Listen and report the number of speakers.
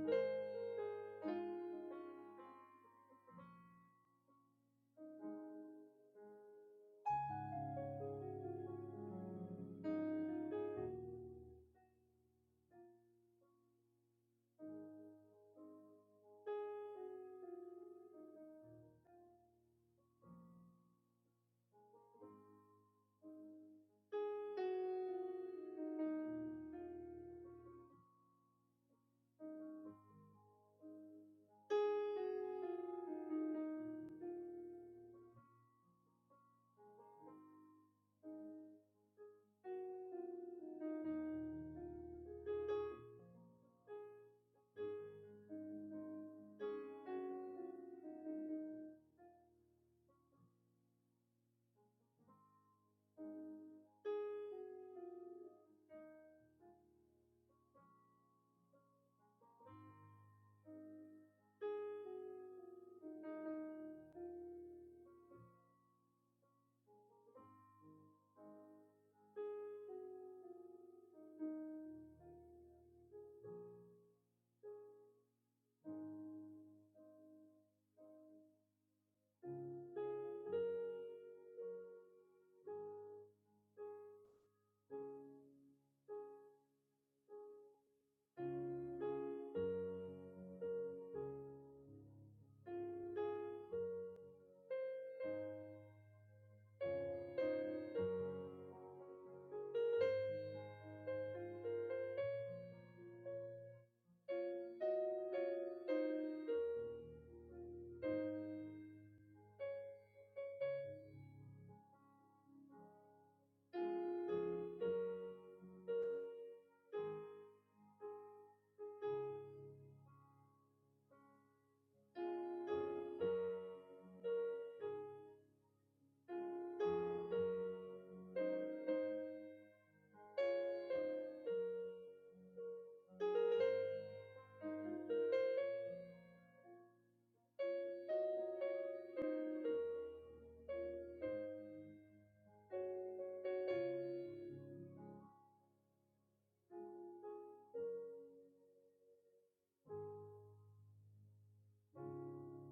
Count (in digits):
0